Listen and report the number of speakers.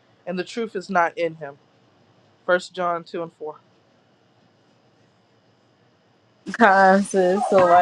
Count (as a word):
two